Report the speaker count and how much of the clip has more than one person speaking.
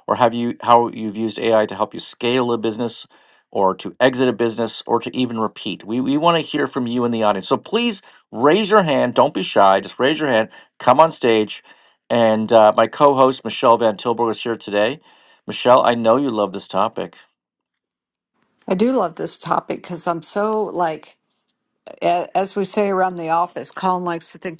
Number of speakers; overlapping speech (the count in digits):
2, no overlap